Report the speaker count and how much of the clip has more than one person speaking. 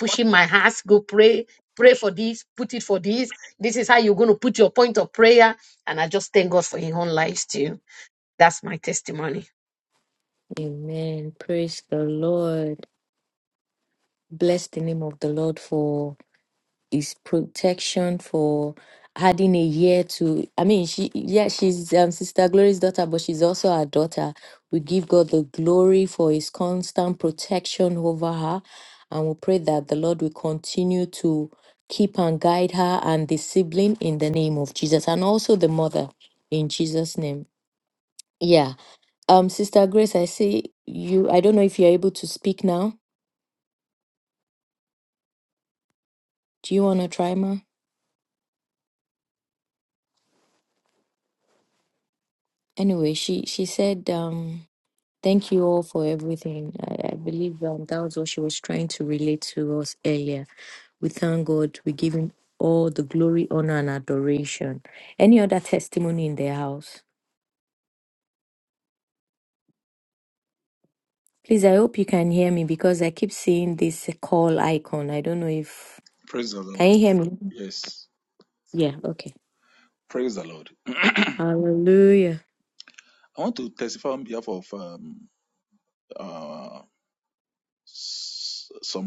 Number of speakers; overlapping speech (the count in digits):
3, under 1%